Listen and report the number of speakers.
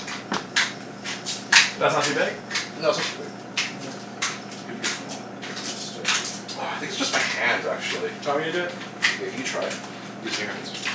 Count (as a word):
two